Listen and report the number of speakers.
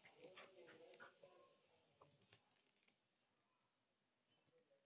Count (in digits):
0